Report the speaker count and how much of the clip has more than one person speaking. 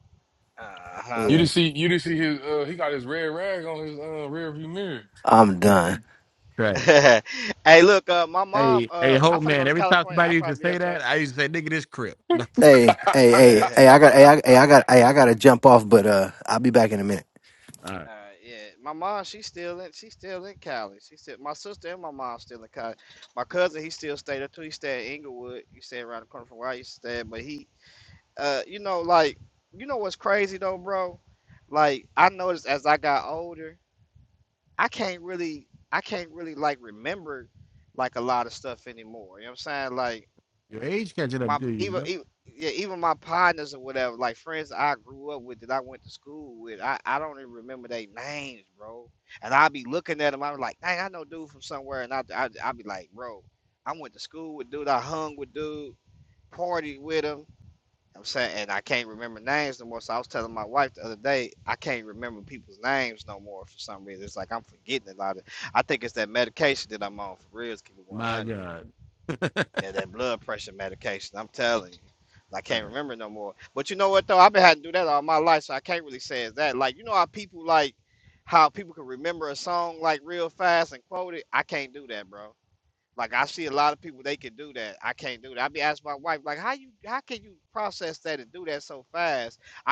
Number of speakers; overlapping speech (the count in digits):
4, about 5%